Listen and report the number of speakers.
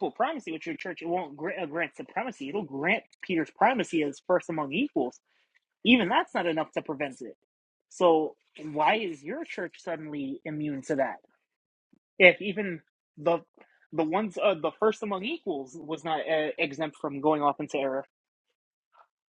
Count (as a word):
one